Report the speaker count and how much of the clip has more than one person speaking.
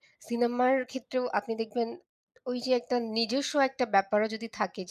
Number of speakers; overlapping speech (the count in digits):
1, no overlap